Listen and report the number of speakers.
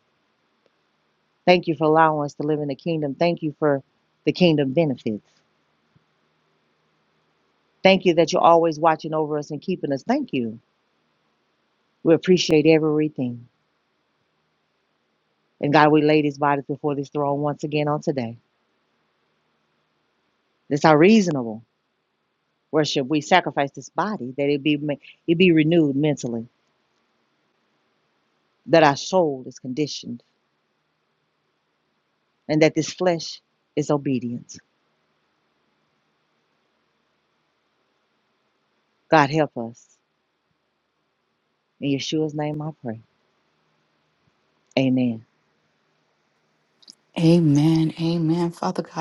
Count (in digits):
2